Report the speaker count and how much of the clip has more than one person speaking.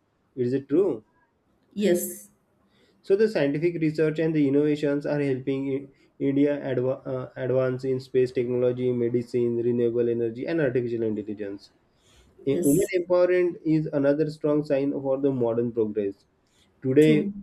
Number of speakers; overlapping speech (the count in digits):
2, about 4%